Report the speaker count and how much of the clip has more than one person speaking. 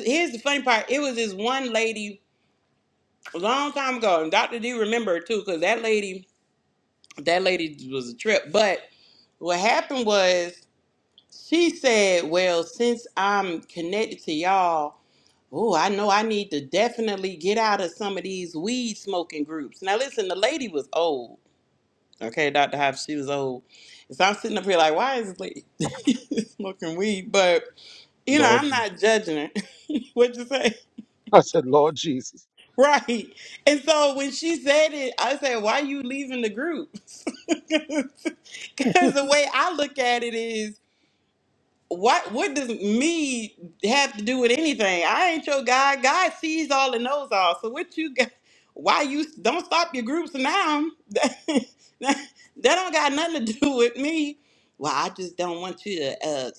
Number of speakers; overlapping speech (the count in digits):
2, about 1%